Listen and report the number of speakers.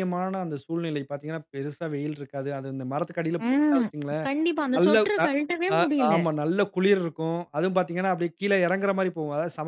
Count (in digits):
2